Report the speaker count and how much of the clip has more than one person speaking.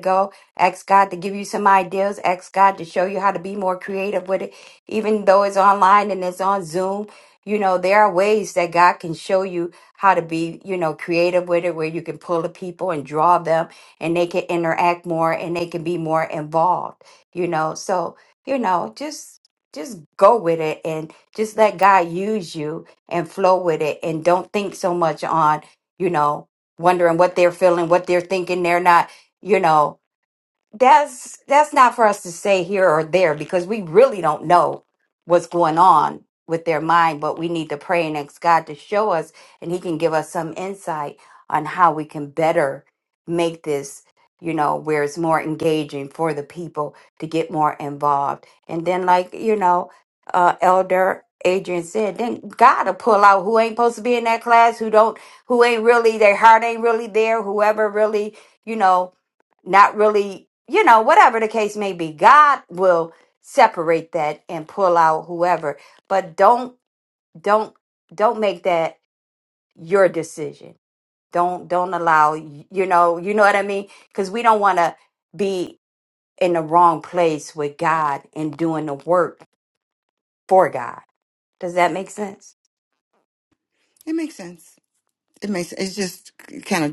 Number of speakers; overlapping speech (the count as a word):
two, no overlap